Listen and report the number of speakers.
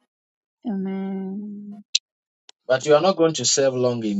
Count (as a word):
two